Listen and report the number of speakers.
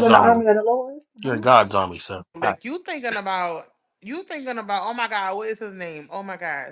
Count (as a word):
three